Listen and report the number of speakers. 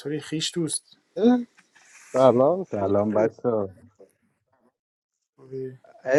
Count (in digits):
3